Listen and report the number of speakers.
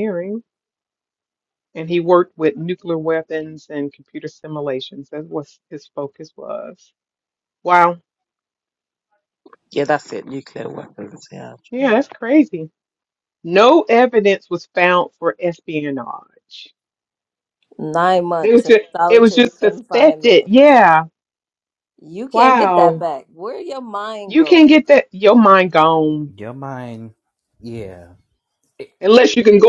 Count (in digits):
4